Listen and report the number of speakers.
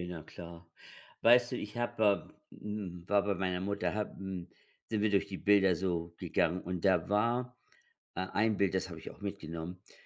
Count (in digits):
1